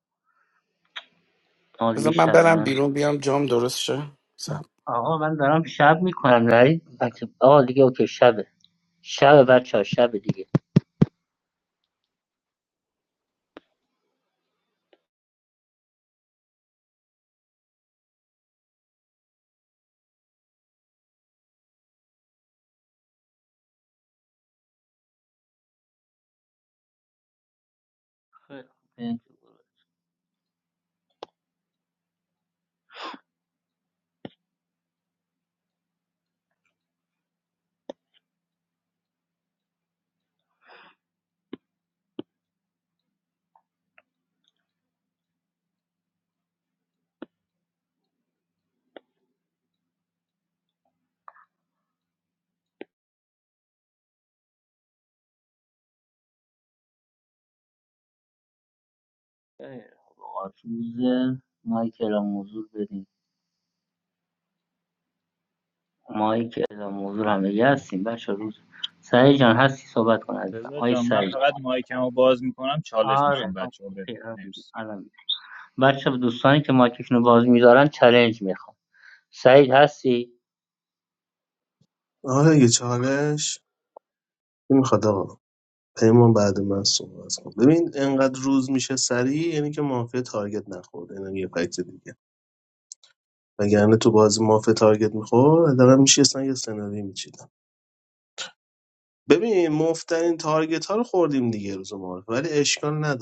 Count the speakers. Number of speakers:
four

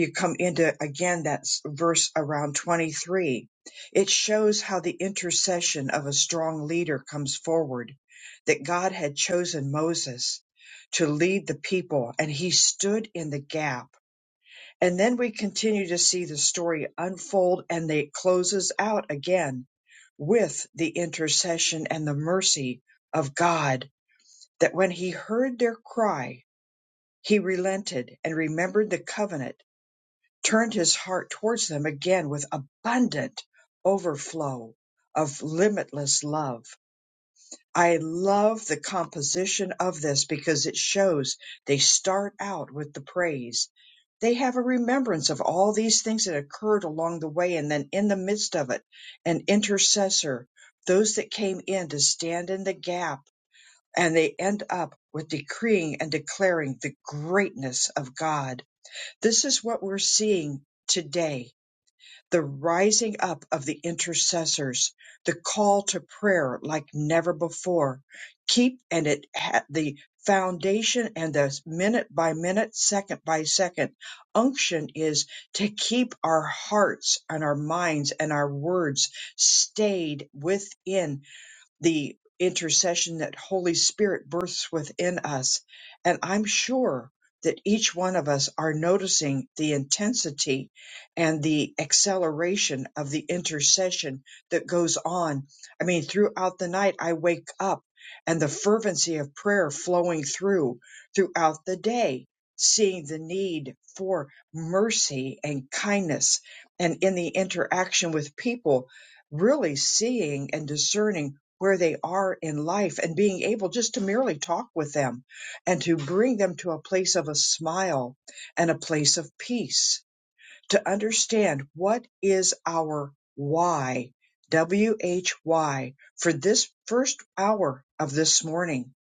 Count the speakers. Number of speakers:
one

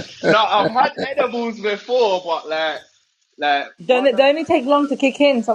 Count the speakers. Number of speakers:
two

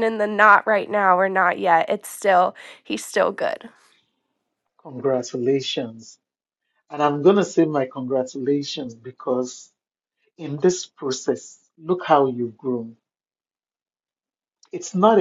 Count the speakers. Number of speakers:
two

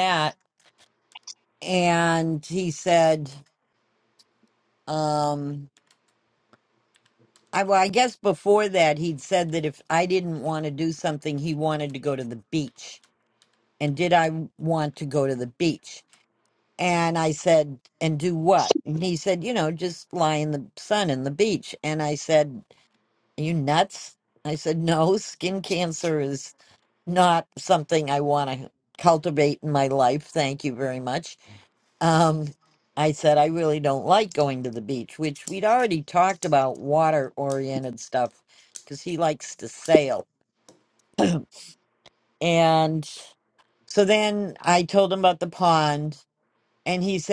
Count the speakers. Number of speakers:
one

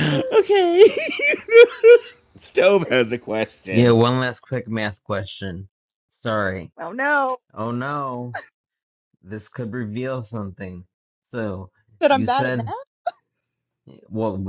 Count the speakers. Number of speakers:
three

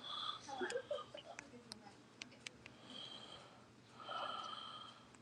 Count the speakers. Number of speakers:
zero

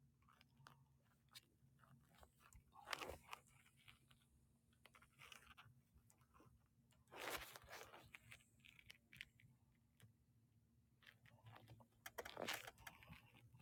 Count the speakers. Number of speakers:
zero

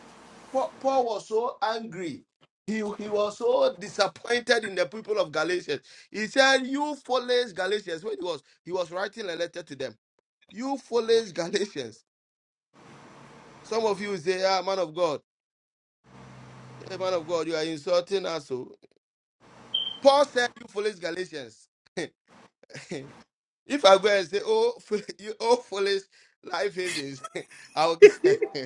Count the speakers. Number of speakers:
one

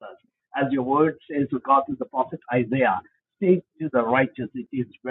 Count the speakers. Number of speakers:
one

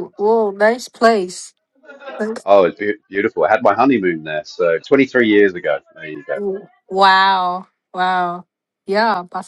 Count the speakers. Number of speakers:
two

